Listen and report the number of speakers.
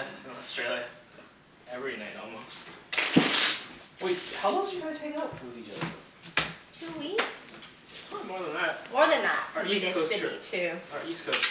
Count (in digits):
3